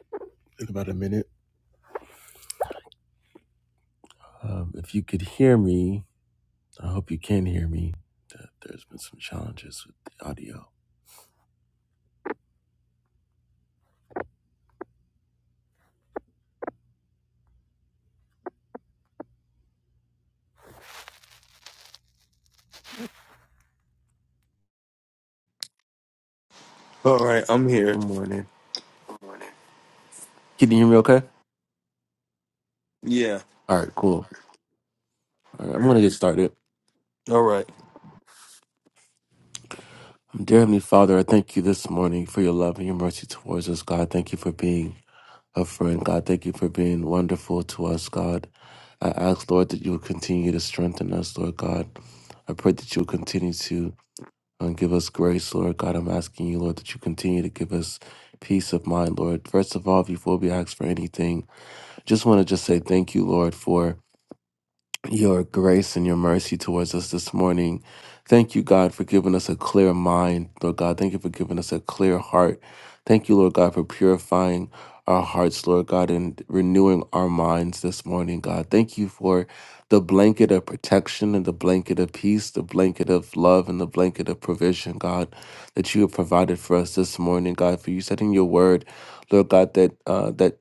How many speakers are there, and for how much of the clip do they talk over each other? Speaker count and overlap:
2, under 1%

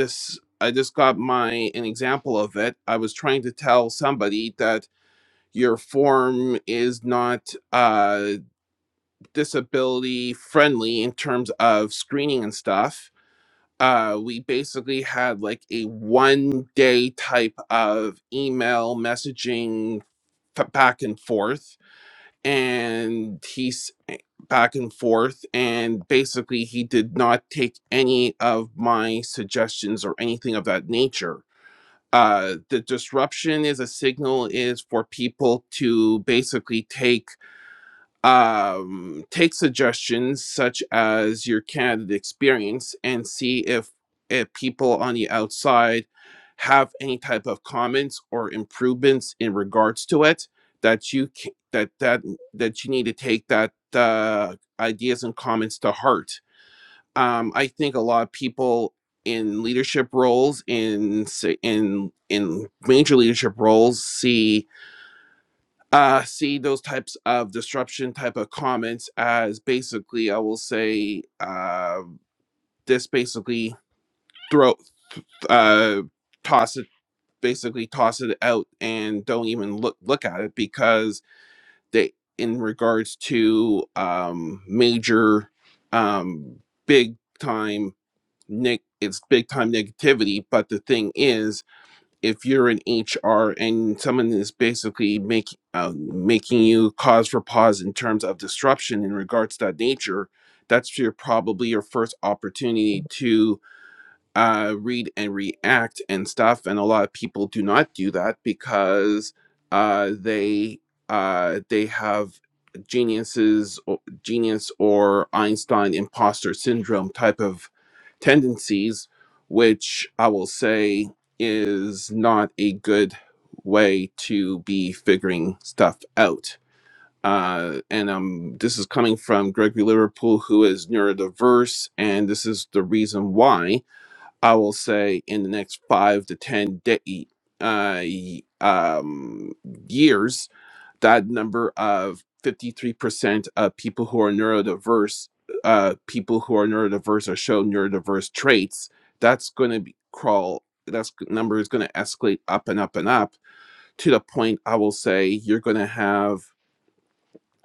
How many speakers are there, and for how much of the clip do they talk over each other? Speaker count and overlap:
1, no overlap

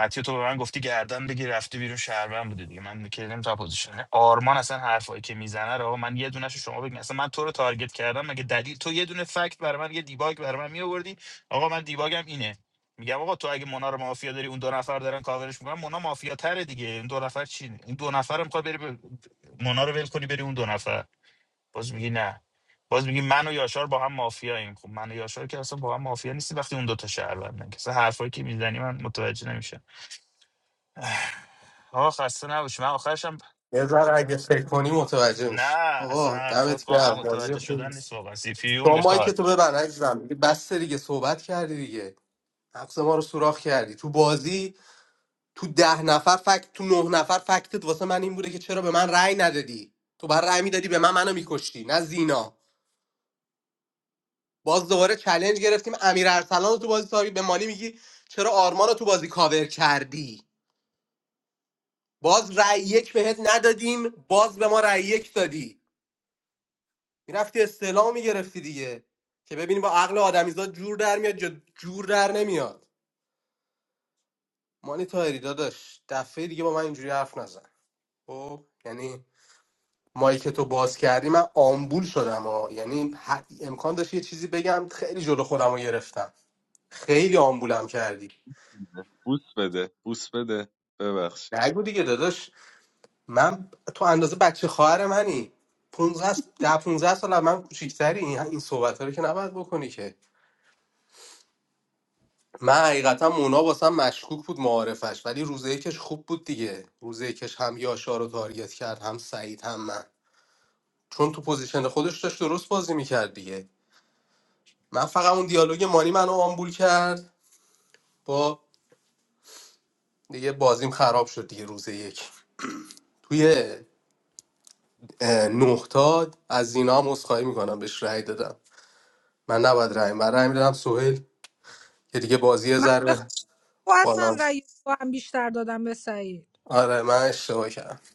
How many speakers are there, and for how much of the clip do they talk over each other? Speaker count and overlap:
4, about 2%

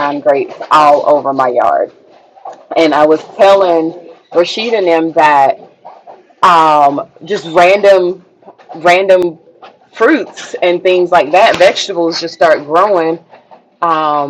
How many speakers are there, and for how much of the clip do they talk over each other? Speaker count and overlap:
1, no overlap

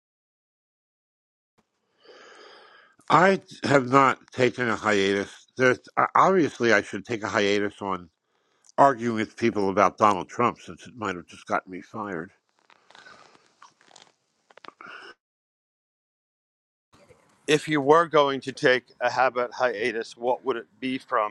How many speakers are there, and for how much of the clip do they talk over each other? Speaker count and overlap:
2, no overlap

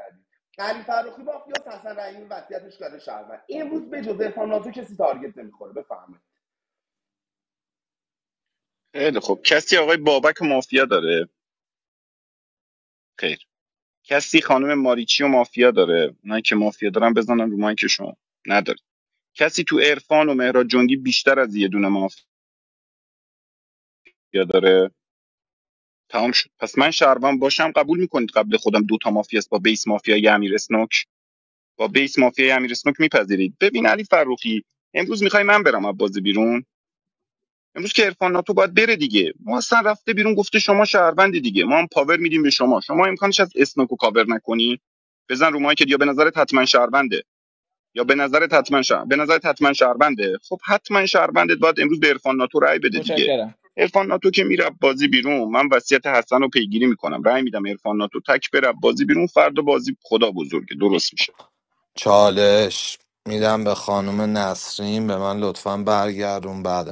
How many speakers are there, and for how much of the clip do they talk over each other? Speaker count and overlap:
3, no overlap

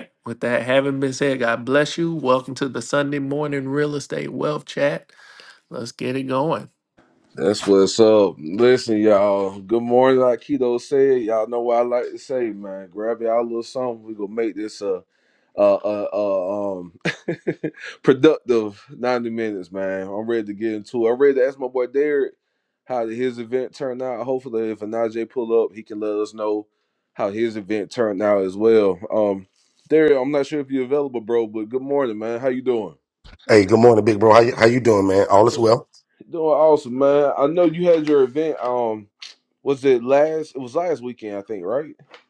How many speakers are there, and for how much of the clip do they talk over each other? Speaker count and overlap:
3, no overlap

